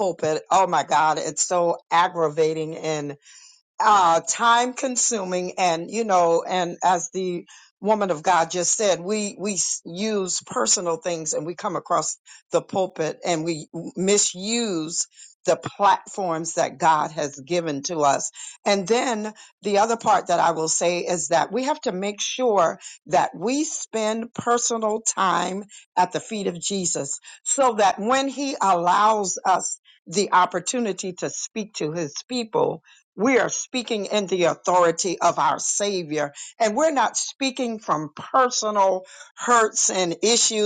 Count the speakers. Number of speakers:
one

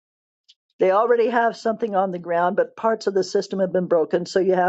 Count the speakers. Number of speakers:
one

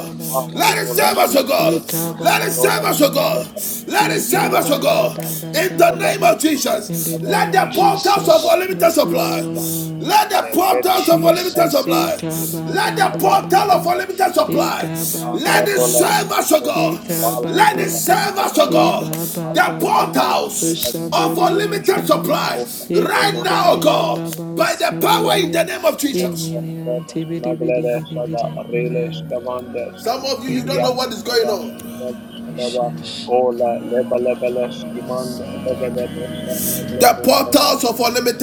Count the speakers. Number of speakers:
three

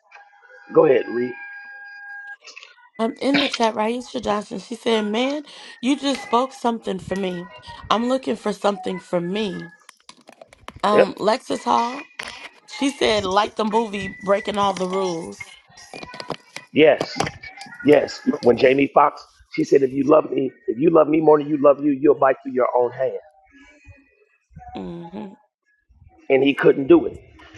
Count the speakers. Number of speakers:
two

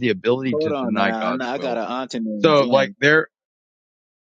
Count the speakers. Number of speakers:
two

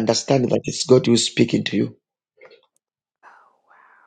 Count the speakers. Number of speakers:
one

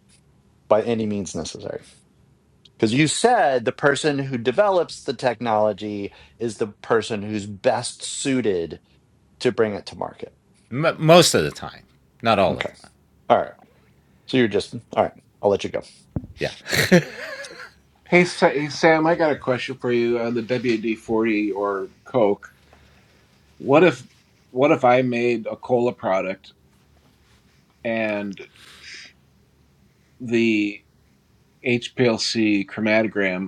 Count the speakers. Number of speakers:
three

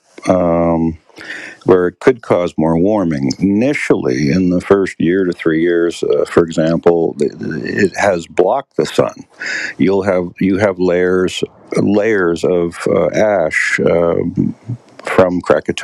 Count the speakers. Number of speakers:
one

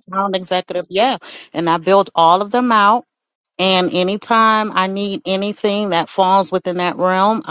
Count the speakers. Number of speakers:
one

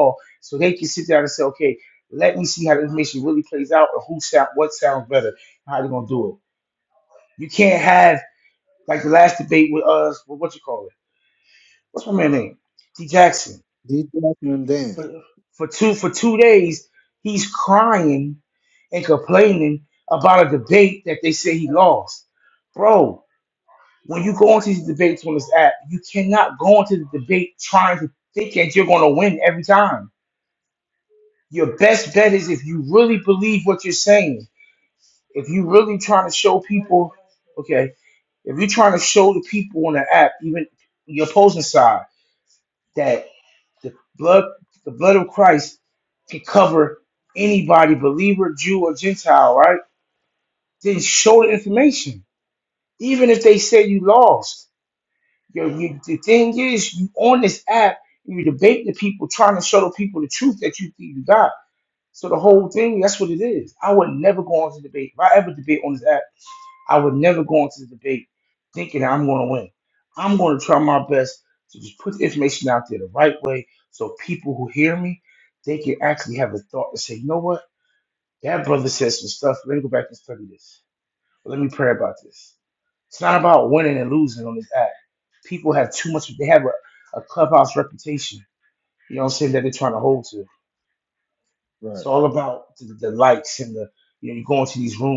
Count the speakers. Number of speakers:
two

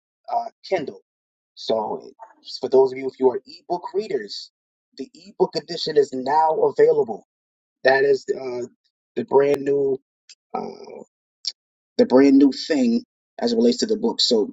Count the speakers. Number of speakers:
one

